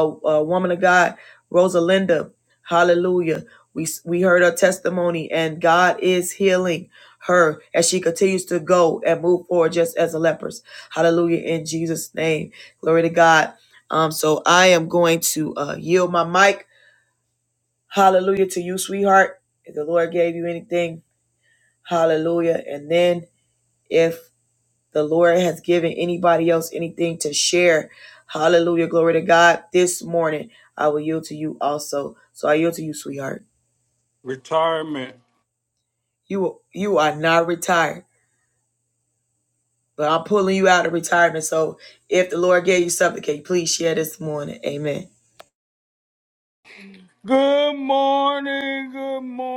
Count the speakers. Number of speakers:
2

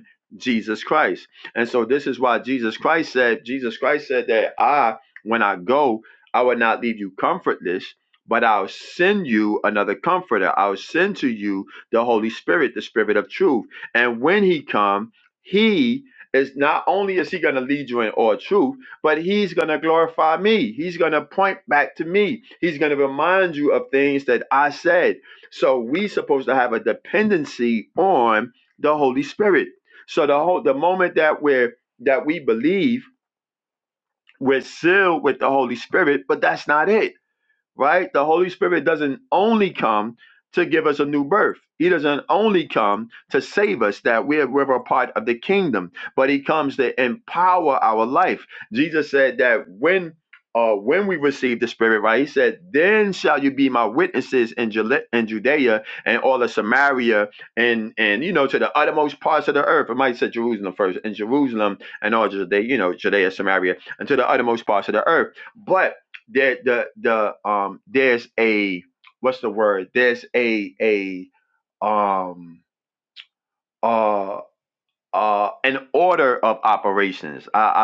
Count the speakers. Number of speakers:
1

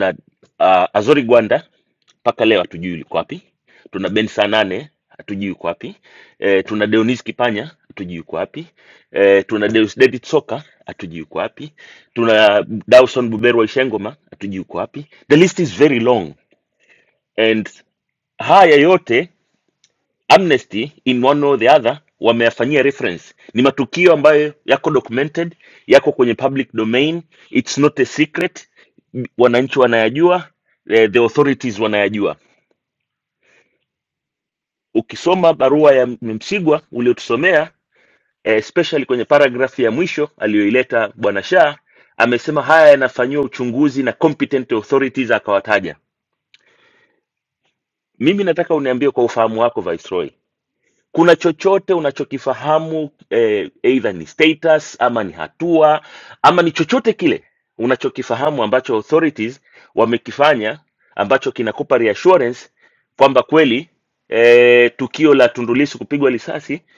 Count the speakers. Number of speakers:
1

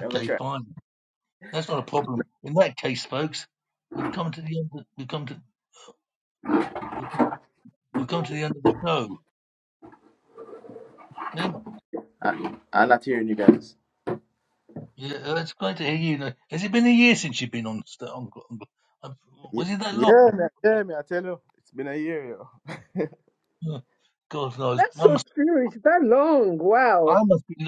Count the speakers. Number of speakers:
3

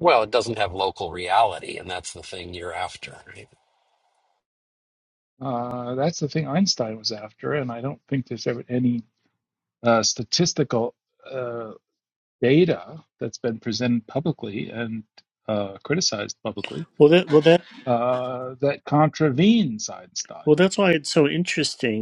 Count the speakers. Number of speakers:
3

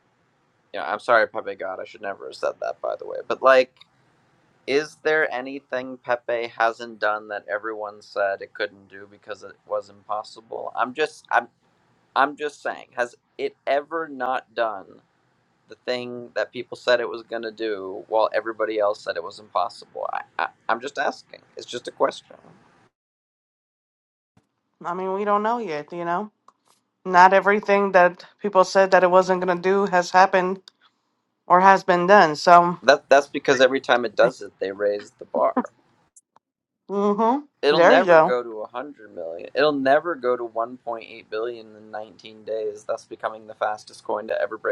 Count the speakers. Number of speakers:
2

